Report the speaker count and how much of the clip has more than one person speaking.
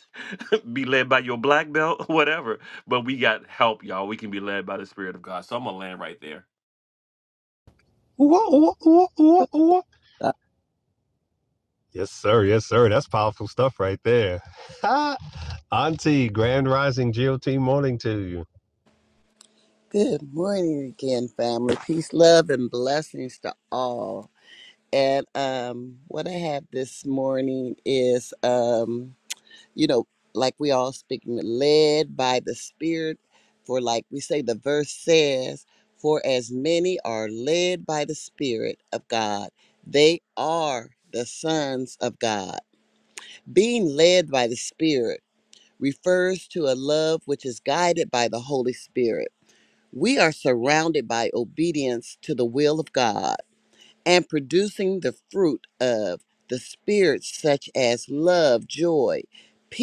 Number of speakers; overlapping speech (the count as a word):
three, no overlap